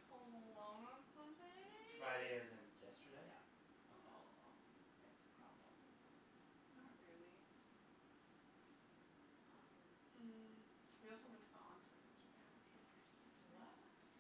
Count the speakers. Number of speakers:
3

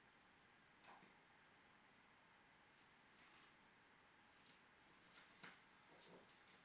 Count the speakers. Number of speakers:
0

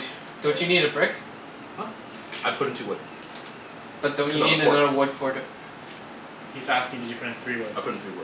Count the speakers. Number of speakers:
3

